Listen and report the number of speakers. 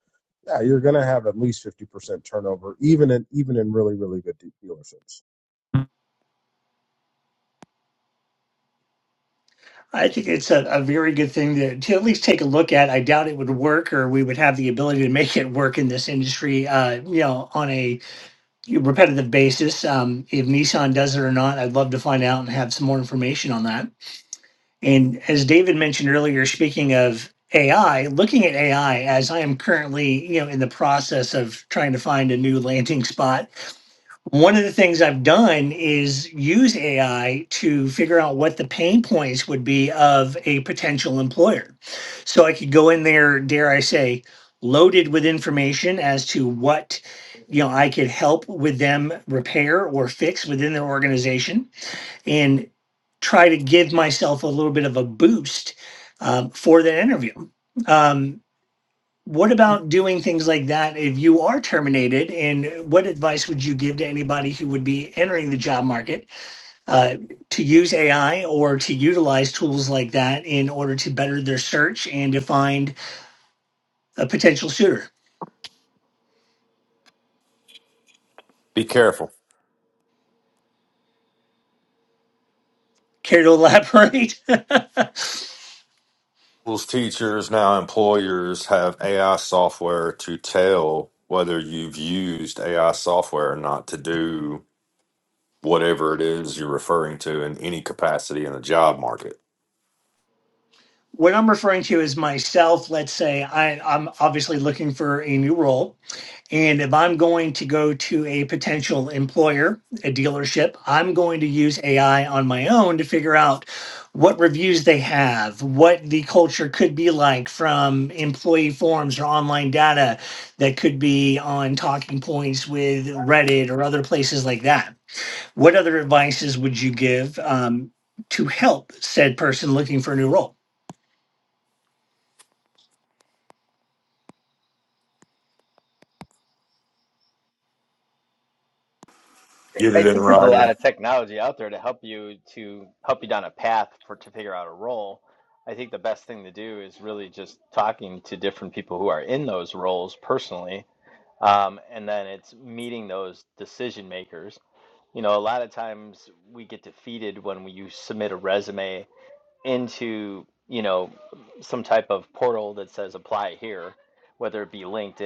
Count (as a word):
four